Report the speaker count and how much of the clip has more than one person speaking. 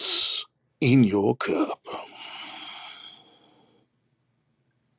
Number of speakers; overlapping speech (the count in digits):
1, no overlap